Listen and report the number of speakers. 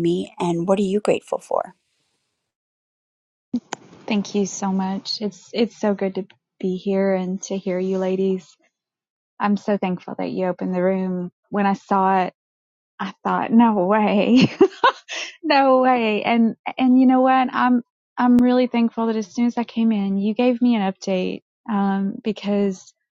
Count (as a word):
two